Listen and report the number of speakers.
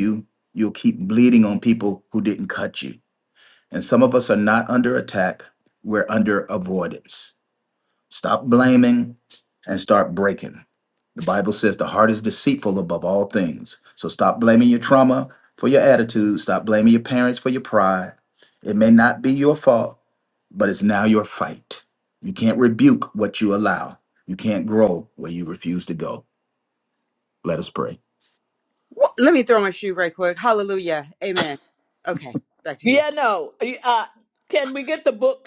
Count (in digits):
3